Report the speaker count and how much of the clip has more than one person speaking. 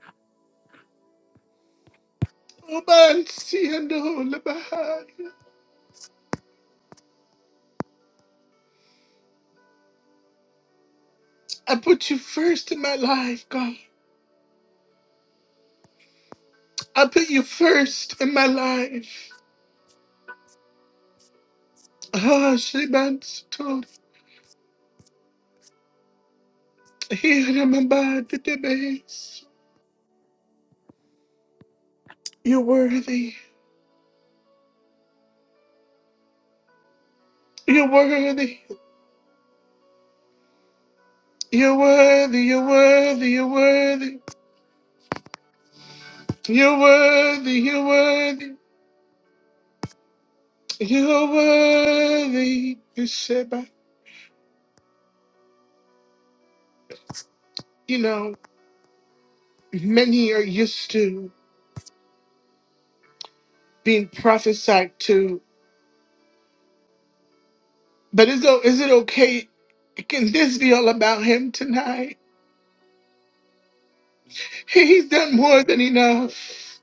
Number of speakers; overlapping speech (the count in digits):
1, no overlap